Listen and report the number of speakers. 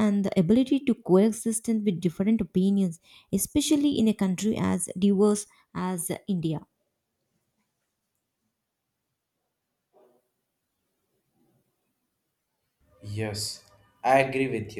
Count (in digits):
2